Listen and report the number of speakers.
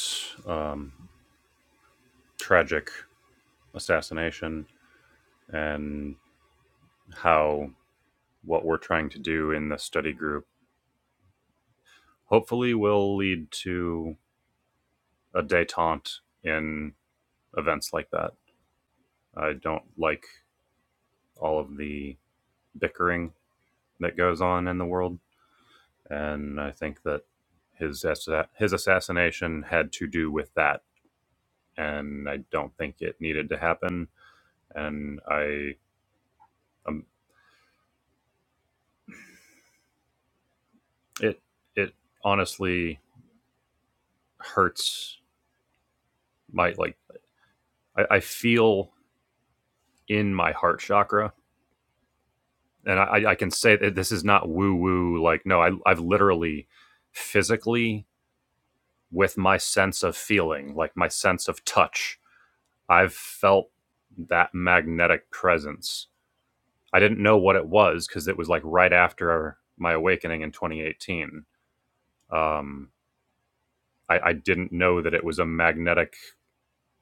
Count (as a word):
one